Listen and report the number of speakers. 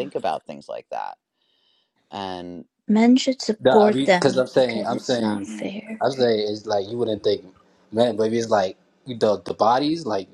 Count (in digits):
3